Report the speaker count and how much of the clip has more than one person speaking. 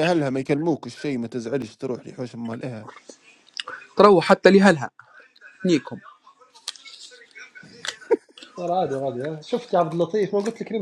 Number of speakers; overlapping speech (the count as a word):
three, no overlap